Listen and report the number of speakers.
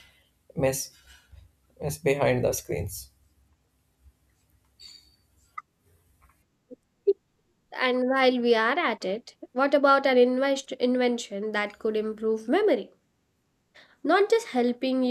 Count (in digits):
2